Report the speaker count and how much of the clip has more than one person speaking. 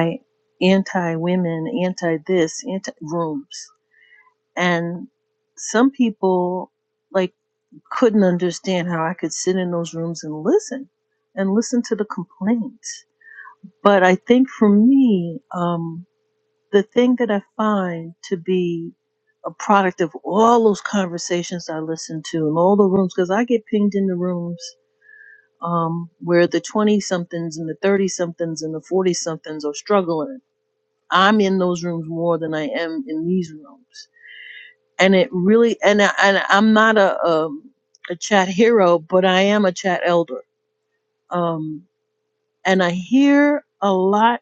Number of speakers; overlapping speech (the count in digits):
1, no overlap